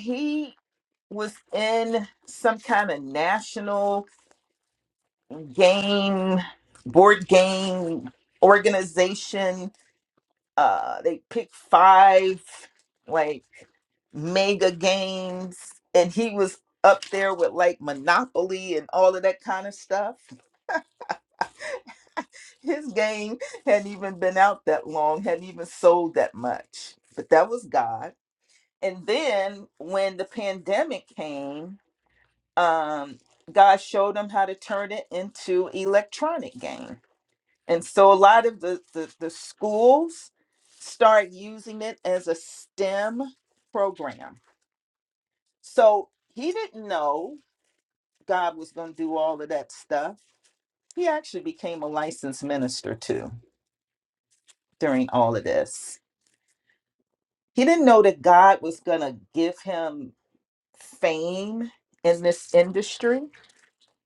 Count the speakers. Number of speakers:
1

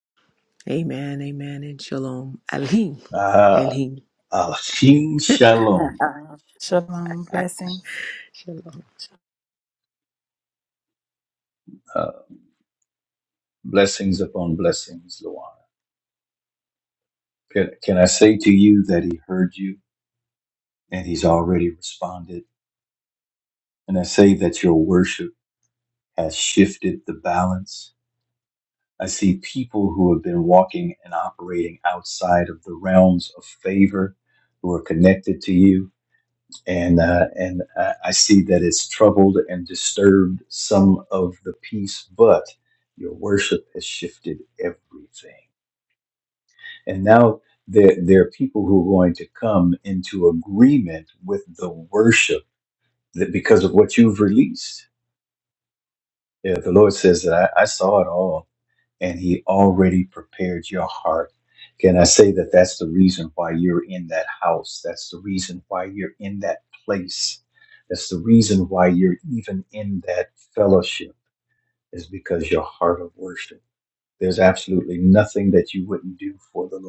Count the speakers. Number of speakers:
3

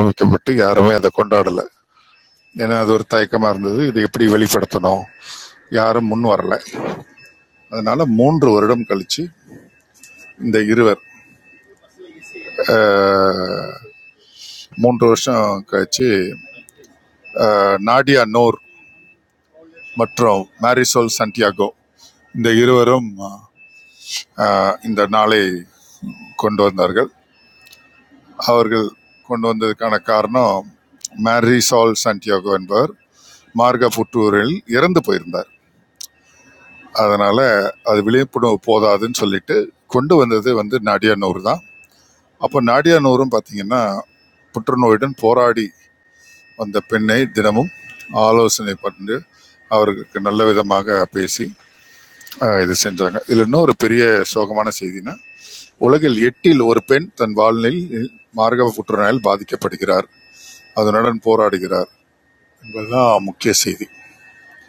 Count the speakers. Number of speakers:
1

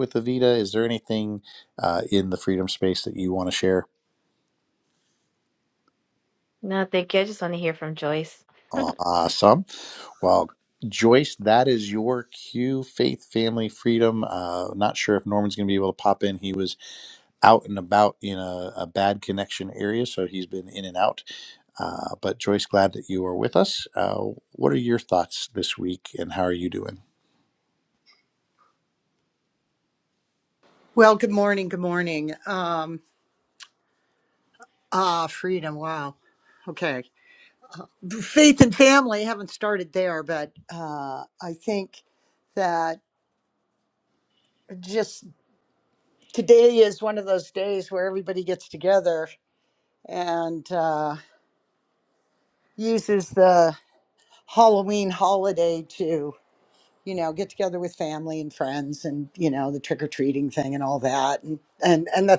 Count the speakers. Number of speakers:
3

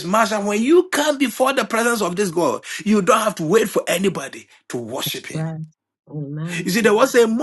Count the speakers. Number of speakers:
2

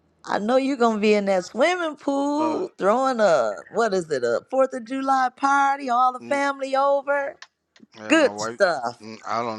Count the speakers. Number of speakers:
2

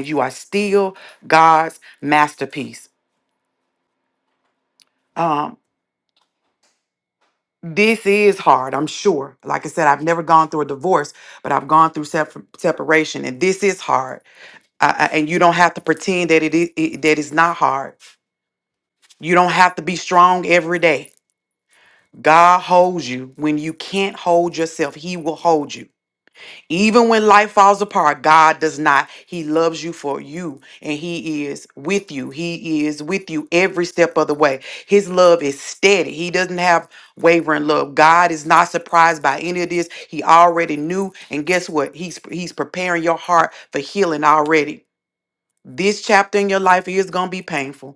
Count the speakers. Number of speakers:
1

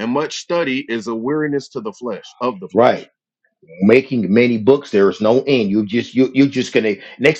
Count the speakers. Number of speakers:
2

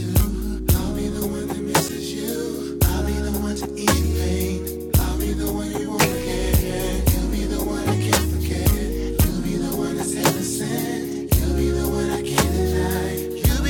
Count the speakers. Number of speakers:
0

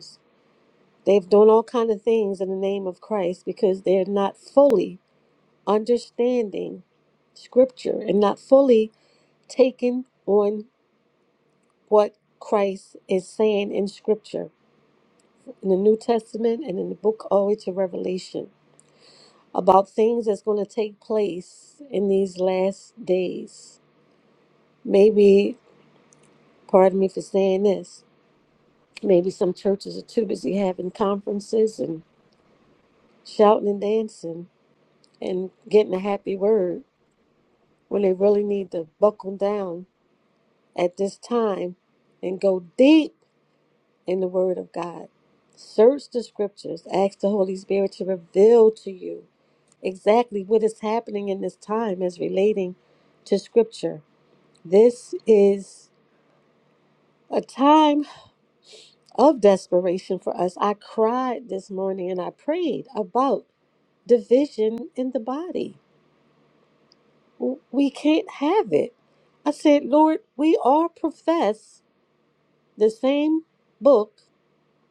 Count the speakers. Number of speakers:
1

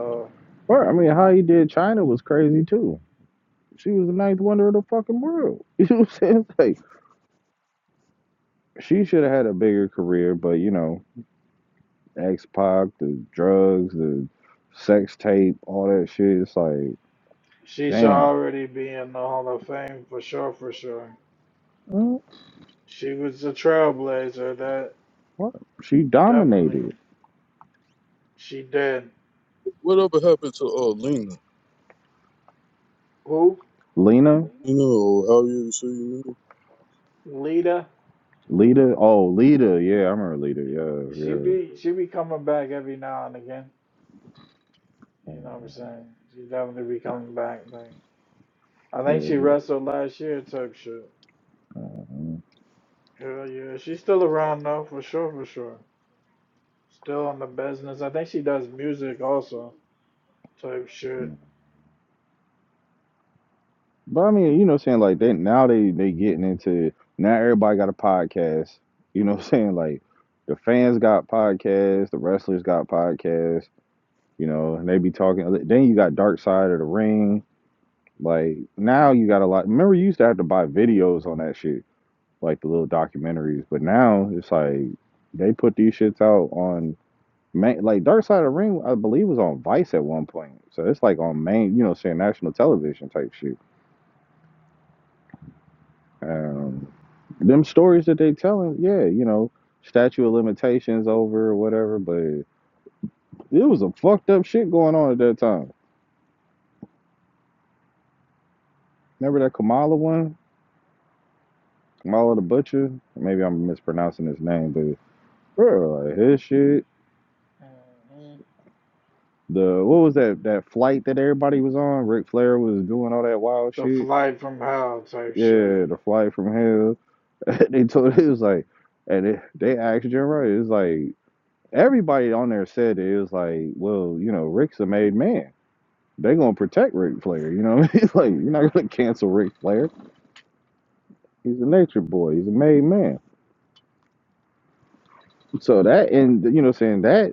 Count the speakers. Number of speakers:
3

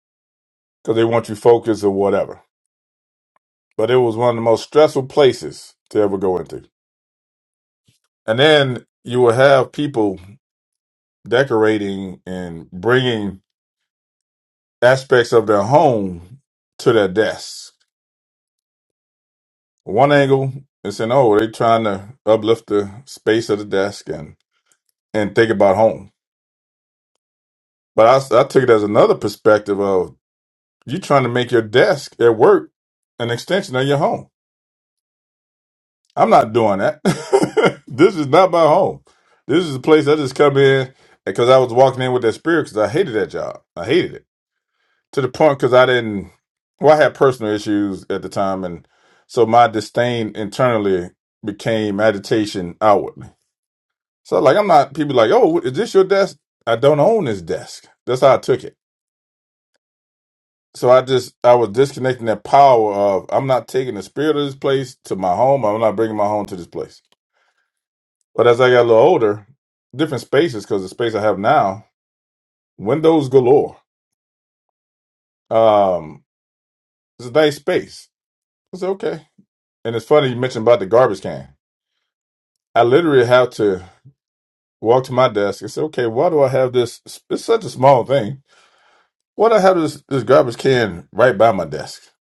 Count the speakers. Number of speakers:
1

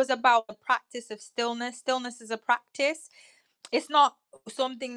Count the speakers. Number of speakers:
1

